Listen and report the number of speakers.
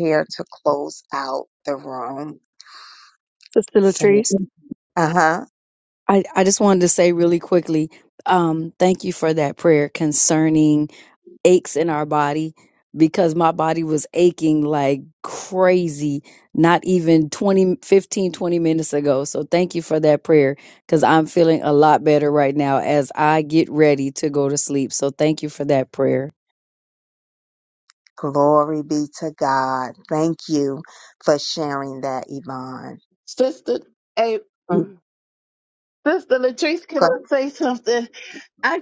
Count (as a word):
three